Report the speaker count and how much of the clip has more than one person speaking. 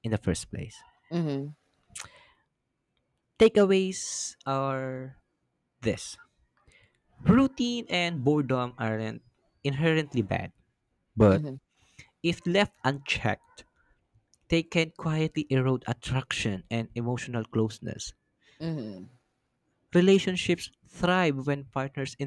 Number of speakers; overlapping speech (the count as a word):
two, under 1%